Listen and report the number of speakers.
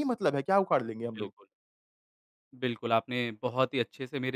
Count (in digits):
2